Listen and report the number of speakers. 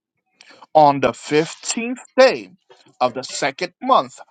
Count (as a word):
one